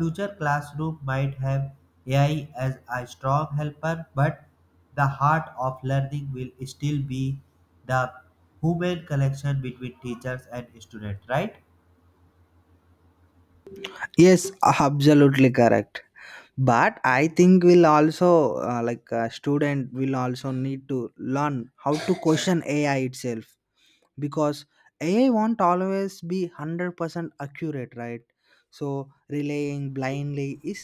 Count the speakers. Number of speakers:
two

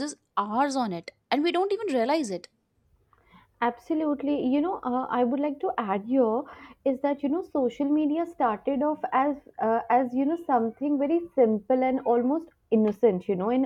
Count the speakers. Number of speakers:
two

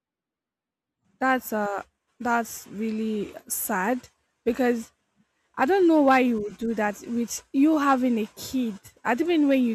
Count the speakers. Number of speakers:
one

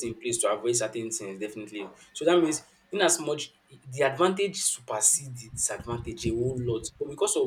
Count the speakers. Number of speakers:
one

